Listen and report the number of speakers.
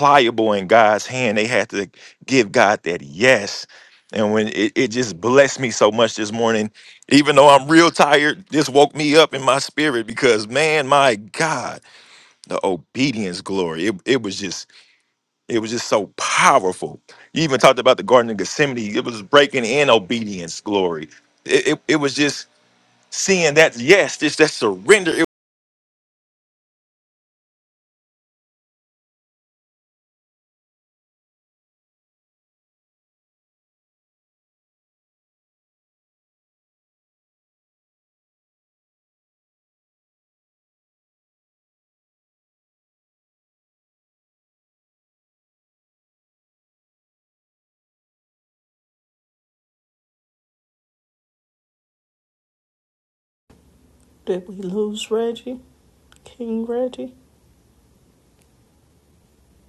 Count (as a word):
two